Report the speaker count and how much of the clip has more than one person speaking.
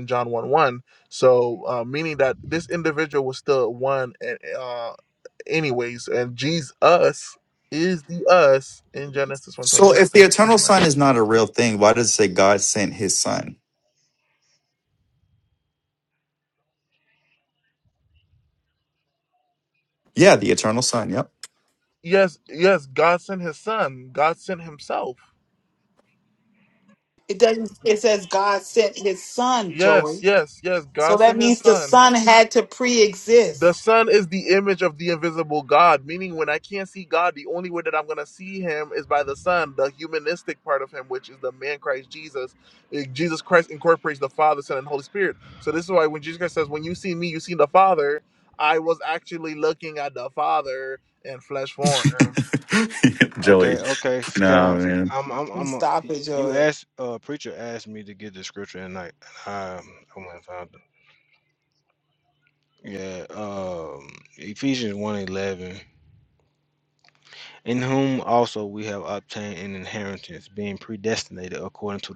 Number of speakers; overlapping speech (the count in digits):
4, about 6%